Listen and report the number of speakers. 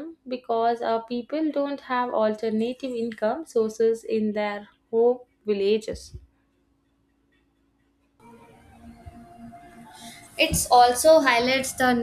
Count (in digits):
2